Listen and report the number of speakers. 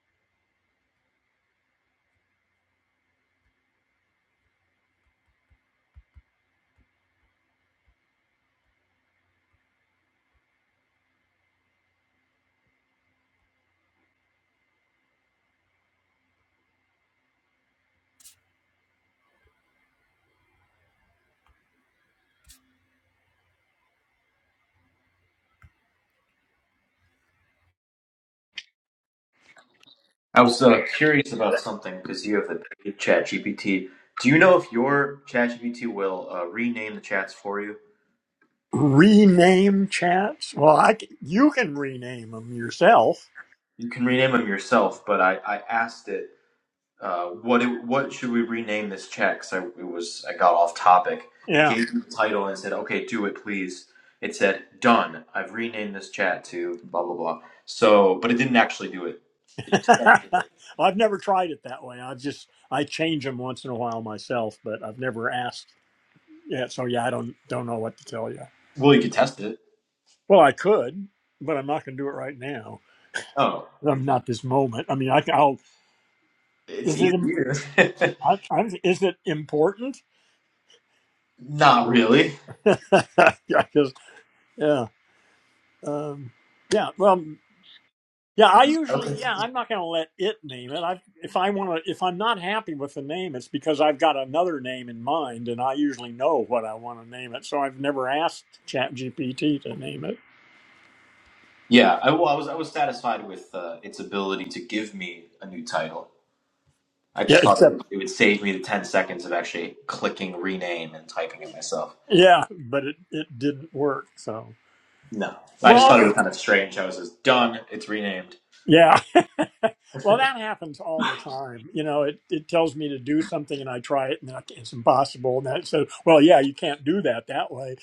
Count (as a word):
two